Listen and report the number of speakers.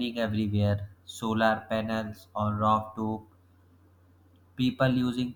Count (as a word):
one